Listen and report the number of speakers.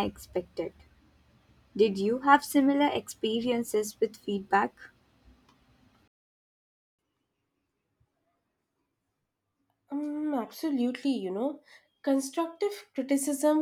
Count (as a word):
two